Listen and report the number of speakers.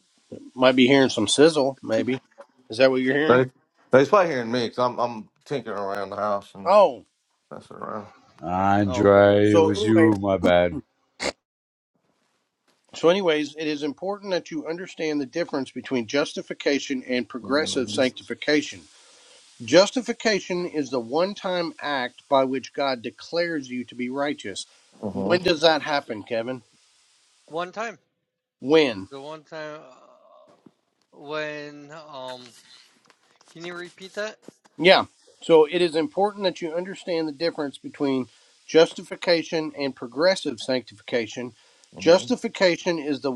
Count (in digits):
4